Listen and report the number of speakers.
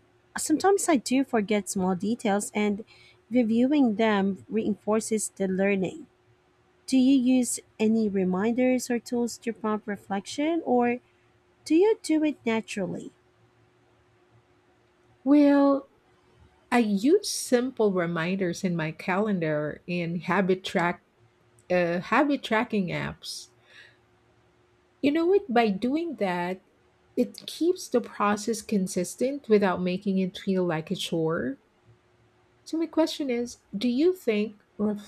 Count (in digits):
2